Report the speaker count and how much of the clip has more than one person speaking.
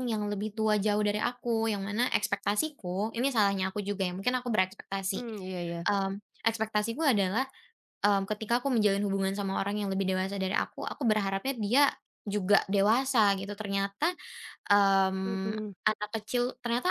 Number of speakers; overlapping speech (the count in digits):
2, about 3%